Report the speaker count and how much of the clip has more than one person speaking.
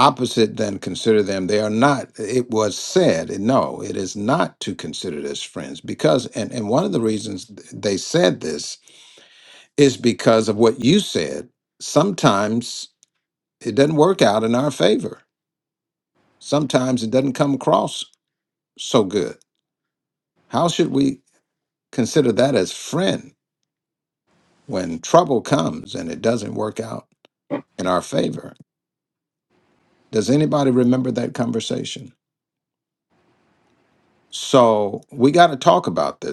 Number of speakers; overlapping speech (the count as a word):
one, no overlap